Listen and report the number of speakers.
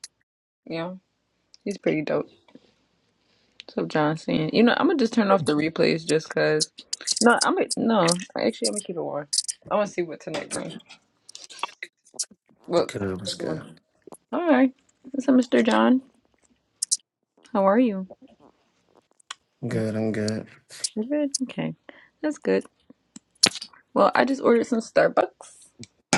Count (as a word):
two